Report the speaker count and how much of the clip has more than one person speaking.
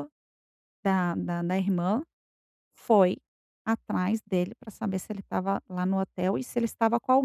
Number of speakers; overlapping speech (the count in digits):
1, no overlap